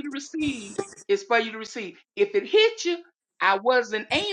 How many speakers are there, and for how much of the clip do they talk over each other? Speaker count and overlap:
1, no overlap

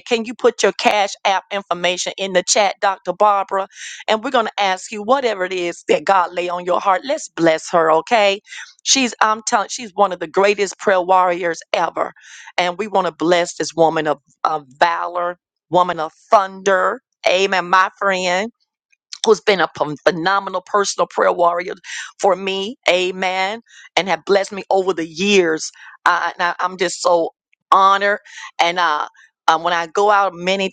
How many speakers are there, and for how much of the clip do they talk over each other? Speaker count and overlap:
1, no overlap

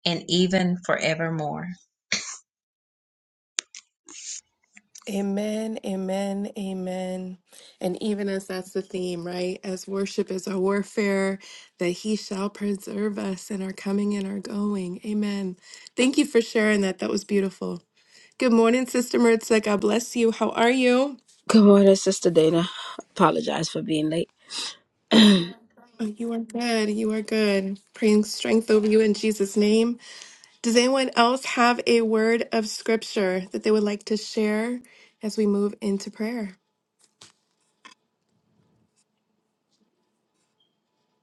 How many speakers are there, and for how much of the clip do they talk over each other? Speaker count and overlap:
3, no overlap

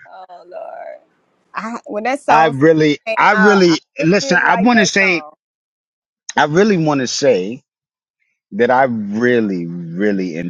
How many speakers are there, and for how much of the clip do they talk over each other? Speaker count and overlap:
2, about 24%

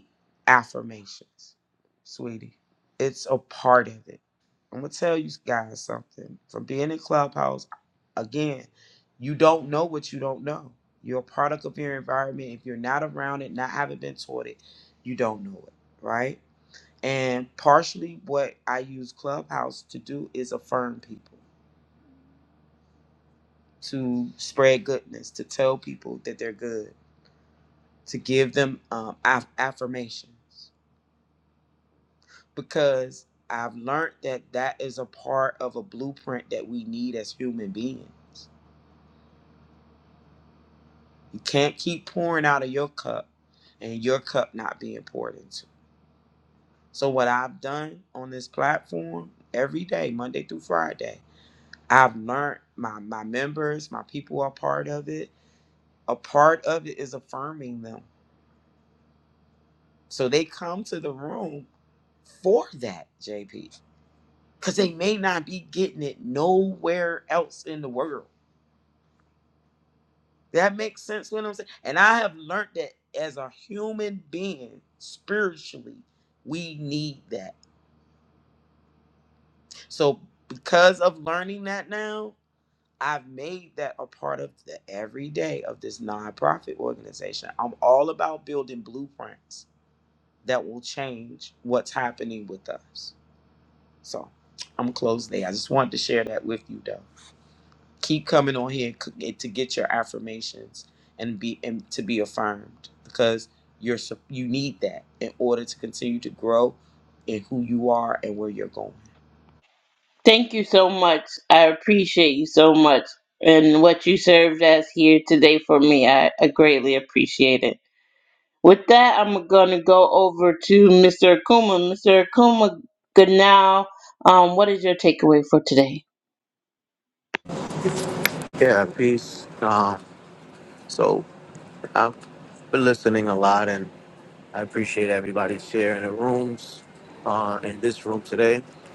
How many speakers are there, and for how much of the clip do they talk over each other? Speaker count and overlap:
3, no overlap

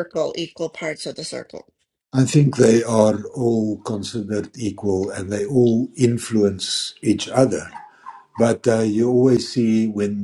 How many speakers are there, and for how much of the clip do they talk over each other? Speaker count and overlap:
2, no overlap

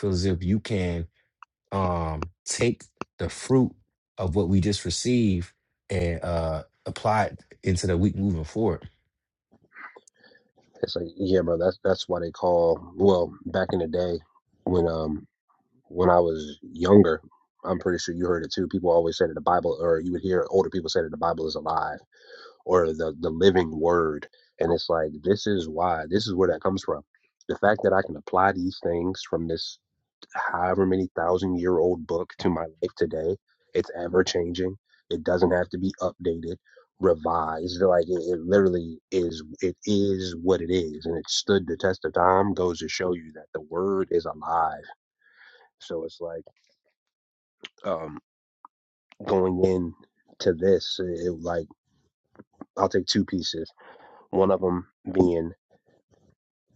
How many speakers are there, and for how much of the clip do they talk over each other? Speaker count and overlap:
2, no overlap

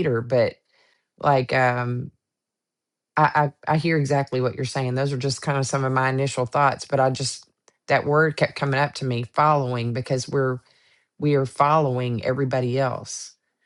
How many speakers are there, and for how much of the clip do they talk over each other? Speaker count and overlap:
1, no overlap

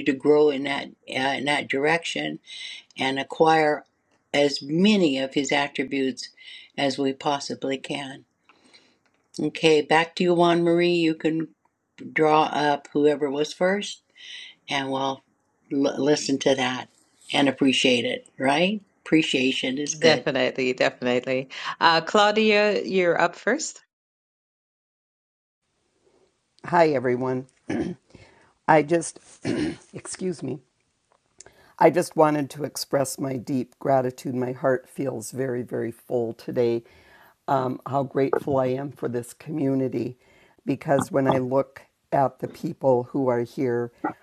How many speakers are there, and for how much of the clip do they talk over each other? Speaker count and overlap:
3, under 1%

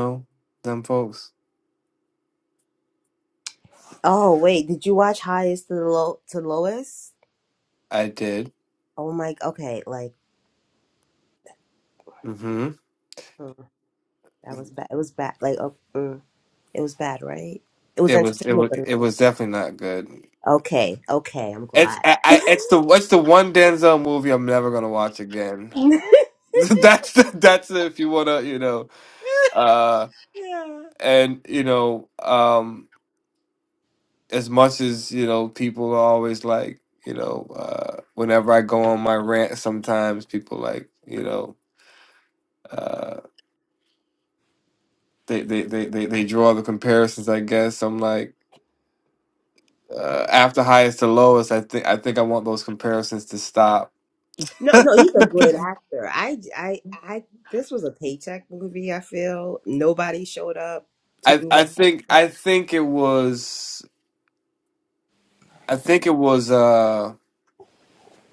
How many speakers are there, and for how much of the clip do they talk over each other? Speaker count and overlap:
2, about 2%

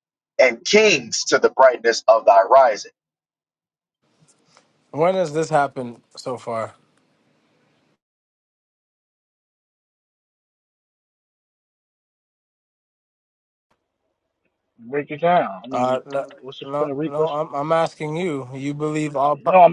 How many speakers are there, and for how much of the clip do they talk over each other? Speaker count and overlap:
3, about 6%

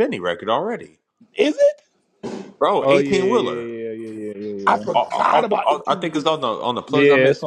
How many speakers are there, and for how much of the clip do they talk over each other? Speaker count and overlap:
3, about 41%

